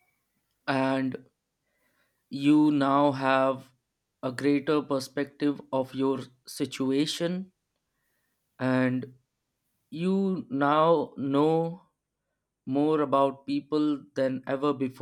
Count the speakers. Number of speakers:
one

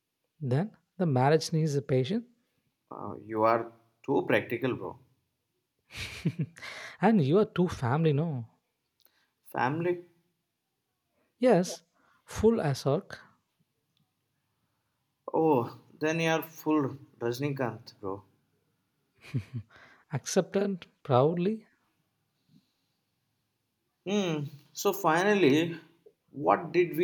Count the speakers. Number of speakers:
two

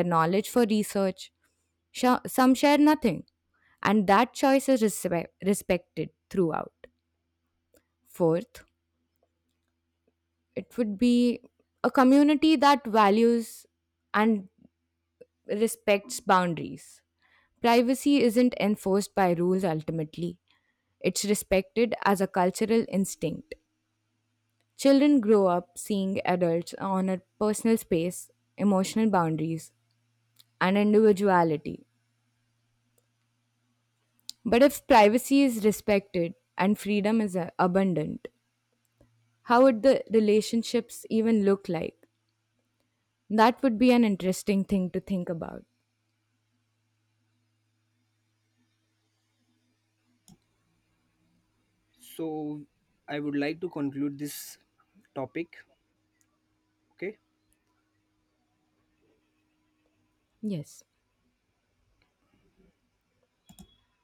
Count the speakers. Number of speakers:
two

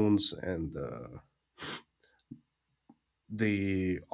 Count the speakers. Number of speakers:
one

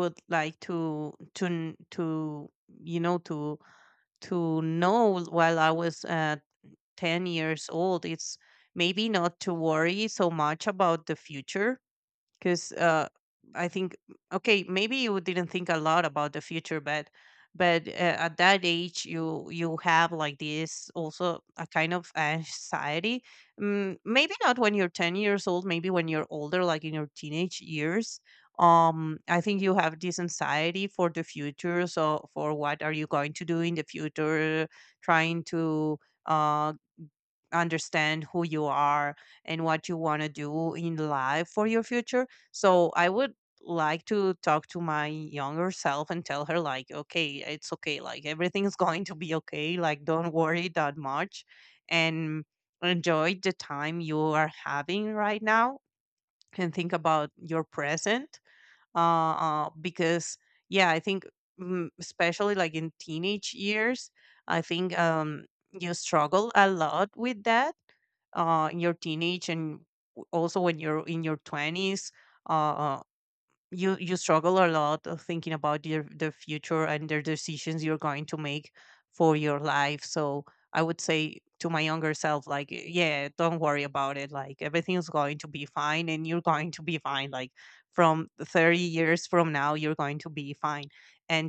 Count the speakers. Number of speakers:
one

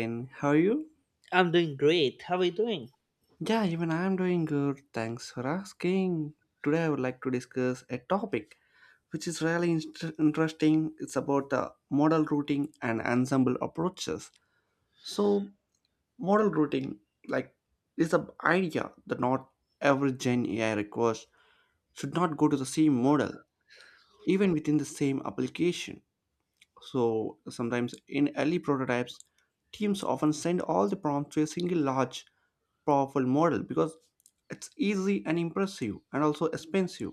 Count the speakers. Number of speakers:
two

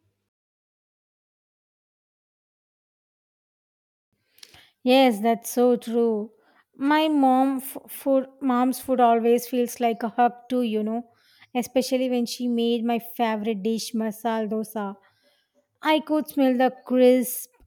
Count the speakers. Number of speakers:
one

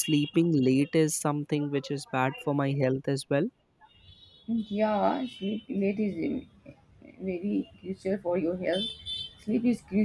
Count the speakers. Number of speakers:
two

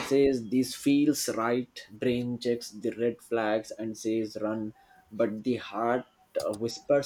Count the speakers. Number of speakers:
one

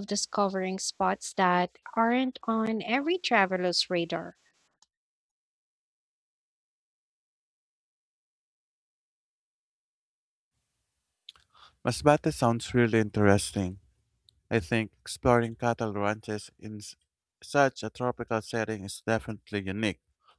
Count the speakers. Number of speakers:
two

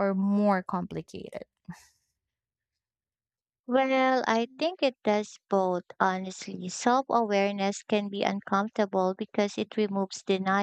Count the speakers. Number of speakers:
two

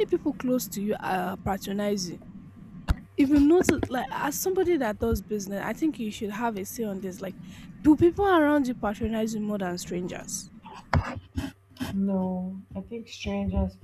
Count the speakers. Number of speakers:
two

